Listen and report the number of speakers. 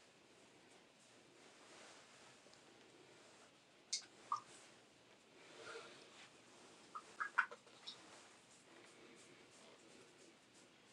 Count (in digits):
0